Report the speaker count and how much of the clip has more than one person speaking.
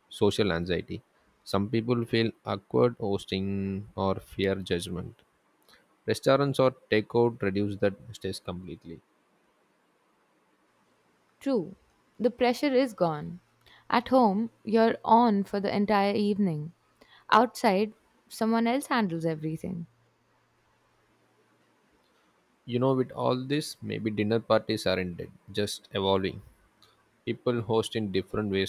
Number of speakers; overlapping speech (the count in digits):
2, no overlap